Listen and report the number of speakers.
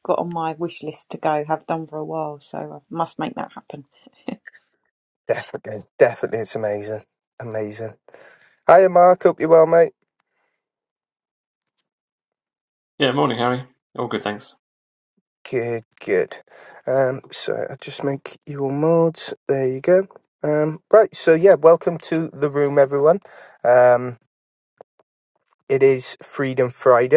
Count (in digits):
3